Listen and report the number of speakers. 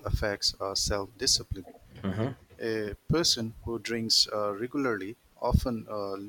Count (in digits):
1